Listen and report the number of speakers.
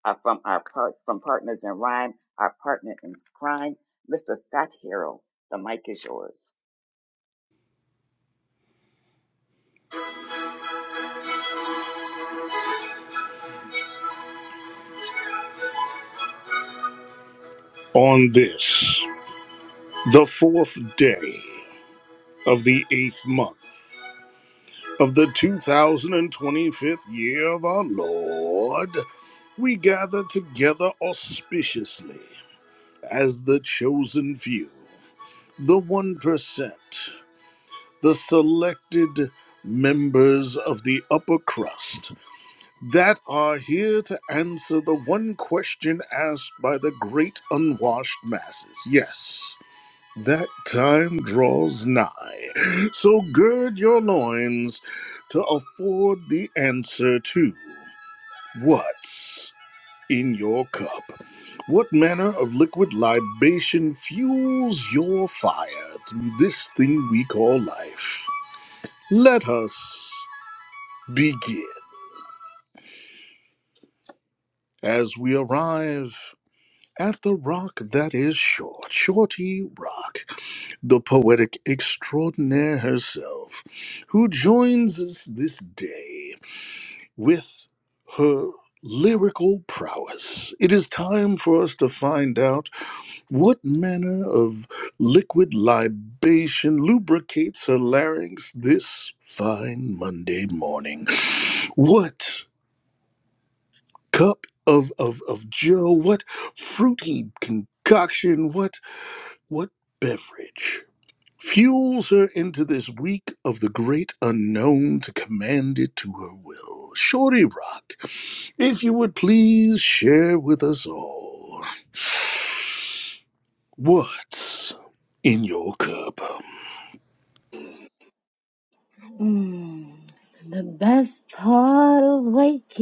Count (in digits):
3